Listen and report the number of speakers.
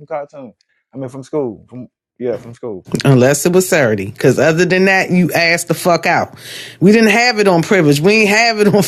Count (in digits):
2